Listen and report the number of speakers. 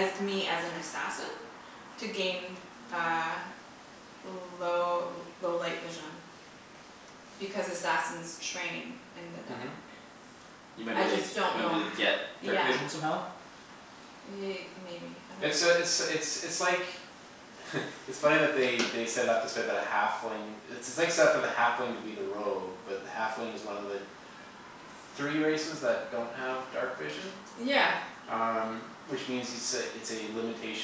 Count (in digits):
3